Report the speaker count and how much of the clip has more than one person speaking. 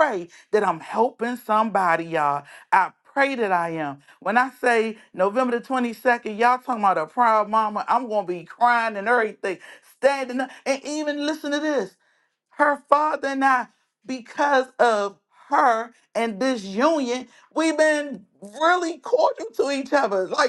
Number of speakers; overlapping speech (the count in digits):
1, no overlap